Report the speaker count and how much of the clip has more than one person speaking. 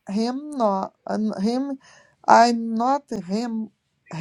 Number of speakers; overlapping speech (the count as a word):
one, no overlap